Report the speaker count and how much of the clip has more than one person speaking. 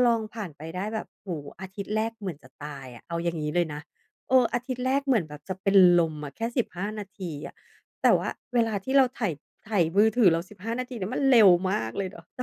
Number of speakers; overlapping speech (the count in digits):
1, no overlap